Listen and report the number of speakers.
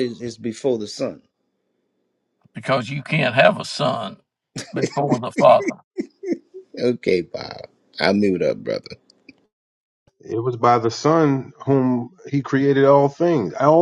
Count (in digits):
3